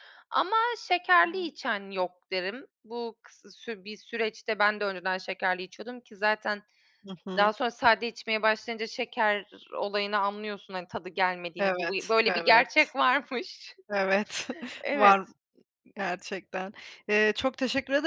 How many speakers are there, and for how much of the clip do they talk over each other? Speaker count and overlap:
two, about 6%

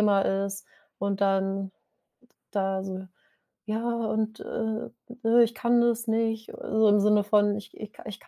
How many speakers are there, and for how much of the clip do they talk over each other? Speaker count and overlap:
one, no overlap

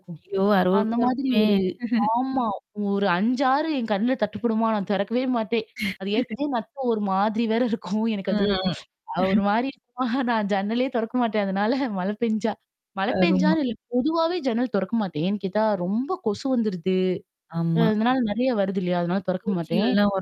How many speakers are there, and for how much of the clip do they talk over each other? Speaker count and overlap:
two, about 10%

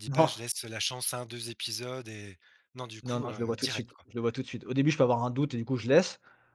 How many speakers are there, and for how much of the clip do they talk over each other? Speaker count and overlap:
two, about 19%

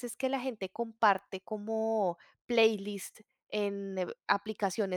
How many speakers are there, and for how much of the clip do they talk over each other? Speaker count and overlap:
one, no overlap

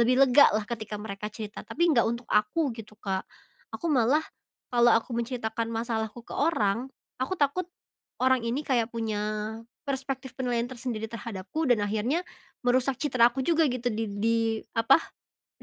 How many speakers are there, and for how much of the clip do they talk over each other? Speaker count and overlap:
one, no overlap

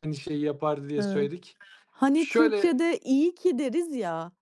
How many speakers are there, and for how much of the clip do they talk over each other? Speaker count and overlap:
two, about 21%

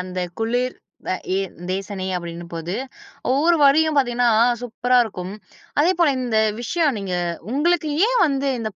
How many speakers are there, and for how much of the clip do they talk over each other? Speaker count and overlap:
one, no overlap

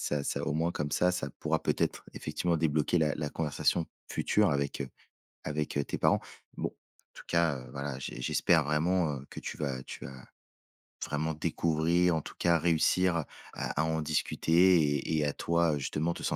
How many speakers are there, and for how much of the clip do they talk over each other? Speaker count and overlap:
one, no overlap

